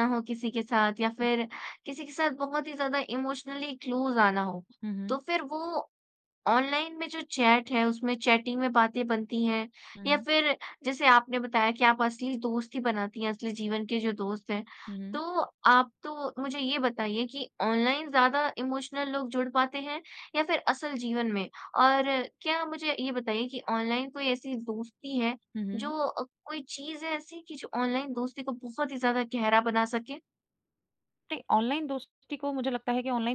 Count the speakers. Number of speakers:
2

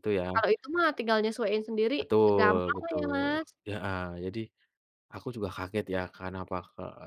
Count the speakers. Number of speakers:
2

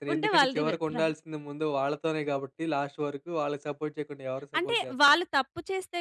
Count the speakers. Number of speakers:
2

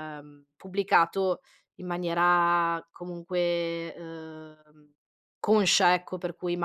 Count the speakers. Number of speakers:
1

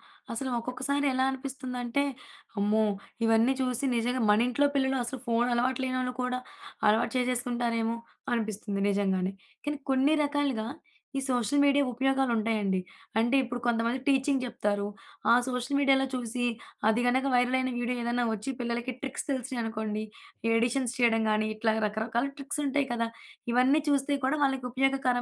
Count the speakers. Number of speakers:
1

